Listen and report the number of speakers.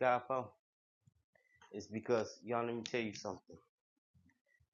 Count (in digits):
1